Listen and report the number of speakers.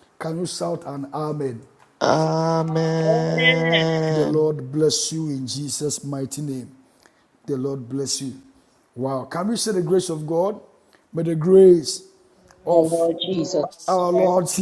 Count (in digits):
3